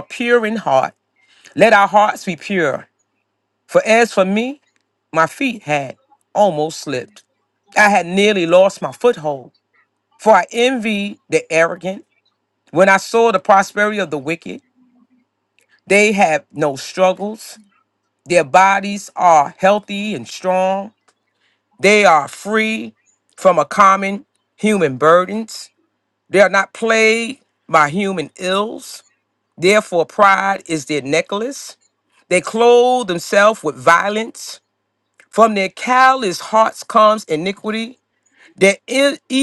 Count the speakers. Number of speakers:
one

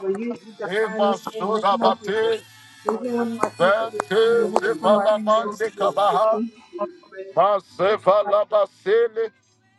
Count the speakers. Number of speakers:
two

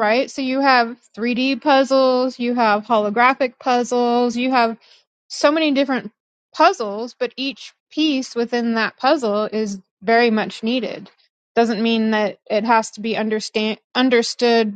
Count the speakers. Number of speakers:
one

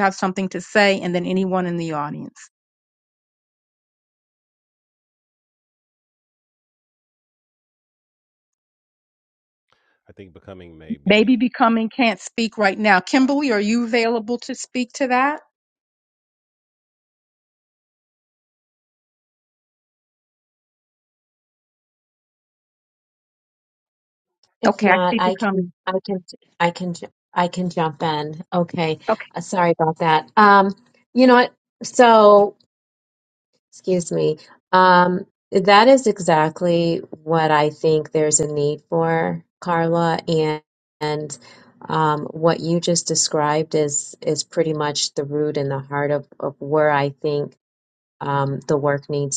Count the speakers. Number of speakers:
three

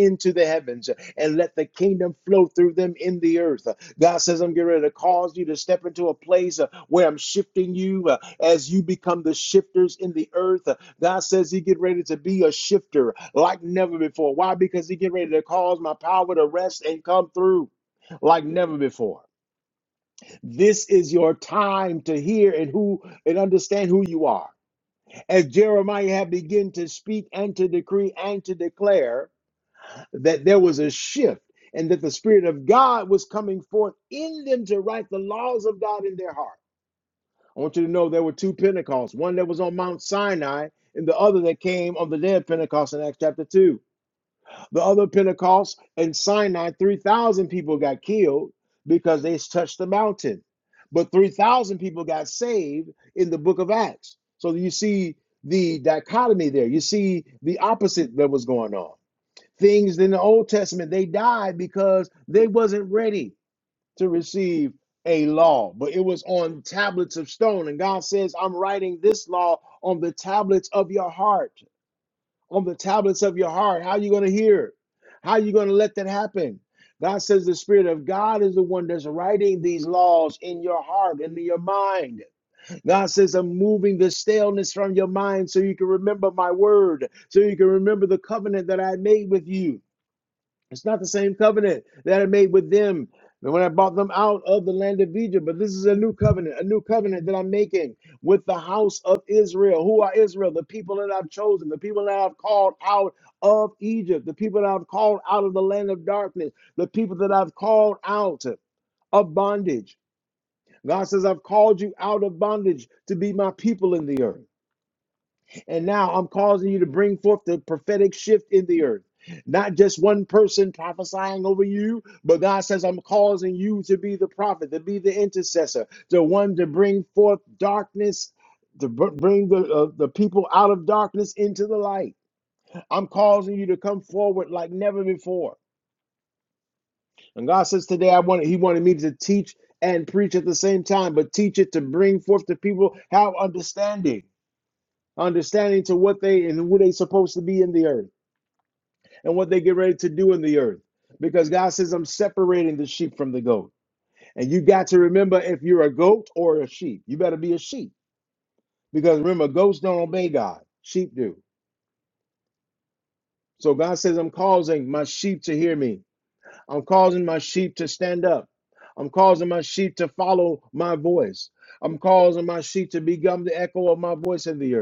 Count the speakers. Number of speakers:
one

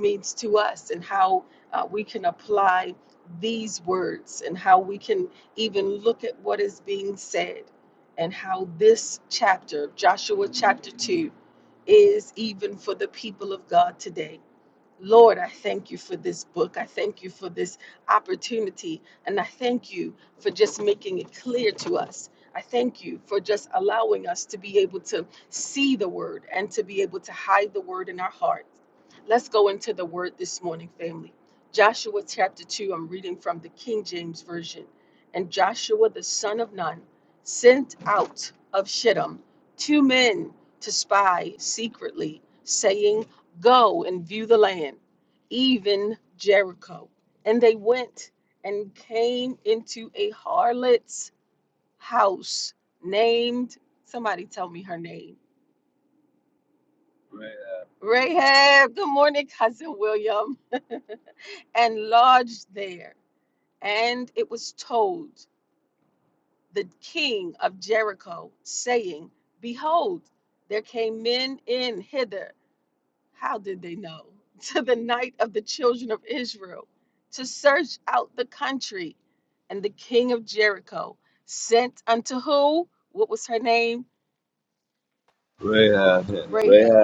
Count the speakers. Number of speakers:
two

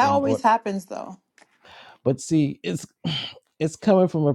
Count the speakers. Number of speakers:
two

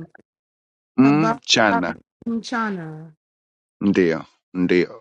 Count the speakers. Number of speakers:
two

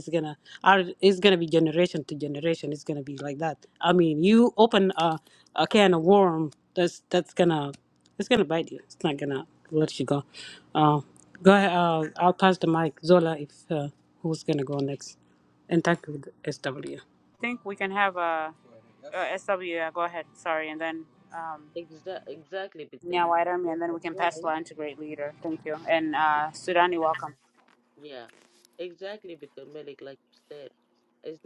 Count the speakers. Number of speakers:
three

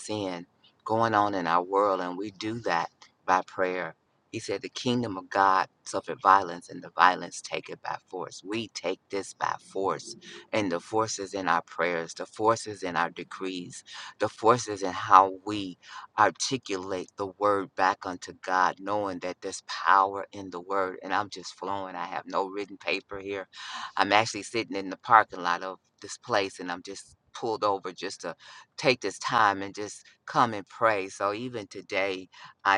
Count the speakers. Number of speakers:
one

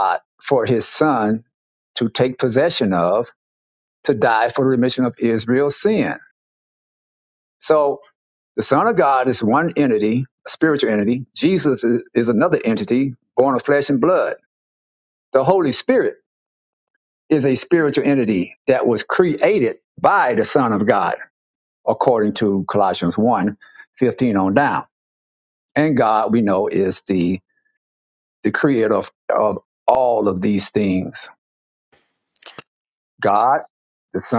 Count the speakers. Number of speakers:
one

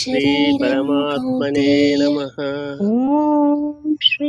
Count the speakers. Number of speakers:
three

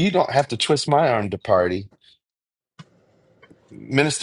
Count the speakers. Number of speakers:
one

